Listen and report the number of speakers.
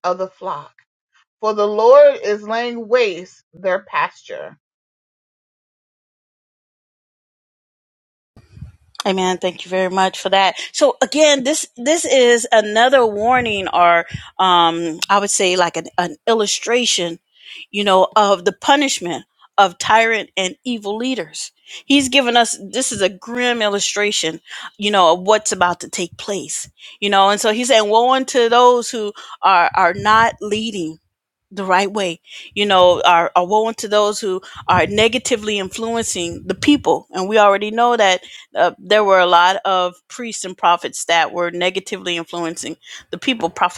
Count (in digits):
2